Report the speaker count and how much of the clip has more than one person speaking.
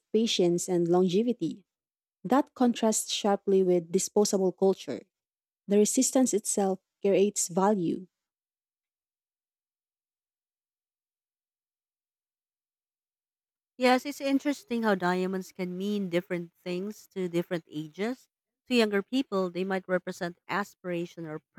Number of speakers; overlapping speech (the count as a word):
two, no overlap